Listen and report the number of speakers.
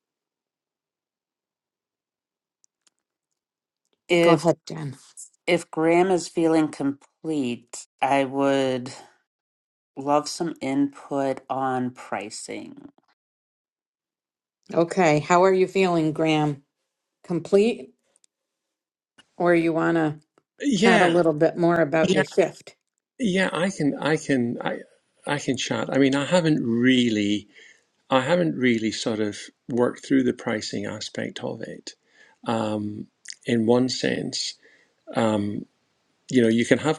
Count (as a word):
three